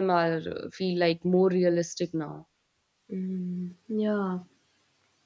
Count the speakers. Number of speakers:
two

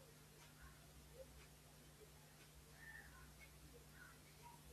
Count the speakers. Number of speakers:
zero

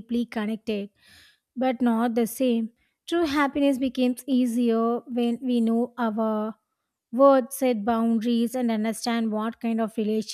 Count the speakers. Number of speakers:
one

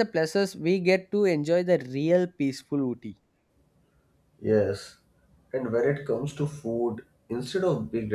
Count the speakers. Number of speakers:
two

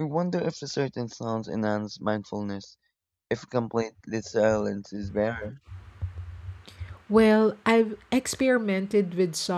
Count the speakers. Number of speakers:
two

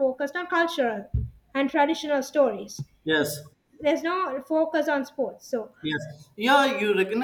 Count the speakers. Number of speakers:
two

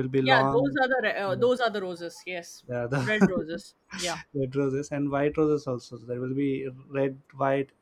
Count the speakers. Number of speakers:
two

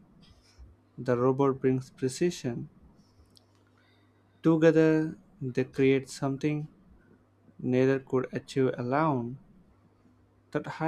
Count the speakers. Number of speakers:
one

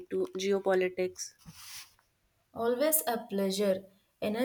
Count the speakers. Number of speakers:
two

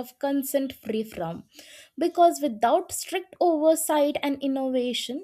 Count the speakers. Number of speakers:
one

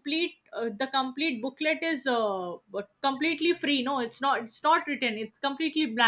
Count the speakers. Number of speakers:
one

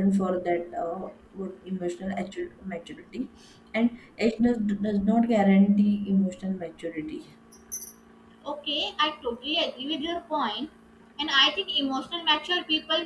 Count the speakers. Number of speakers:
two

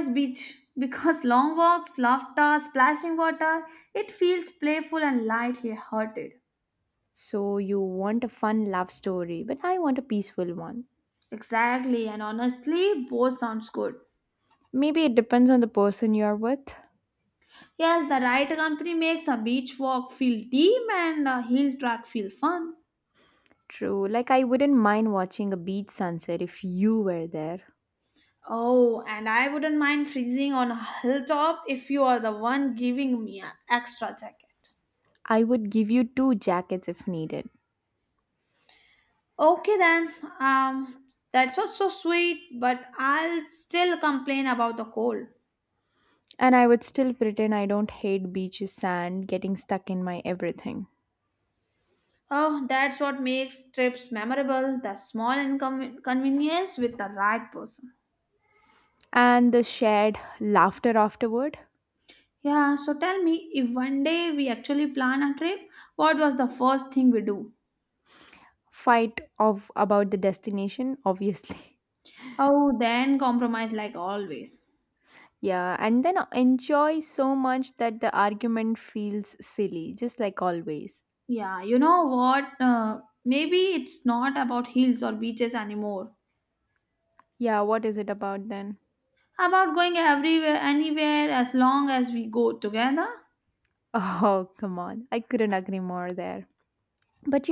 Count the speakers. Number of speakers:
two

